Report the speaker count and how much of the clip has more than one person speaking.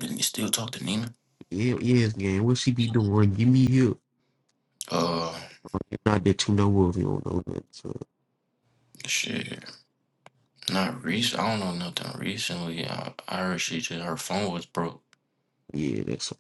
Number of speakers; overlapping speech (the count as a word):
two, no overlap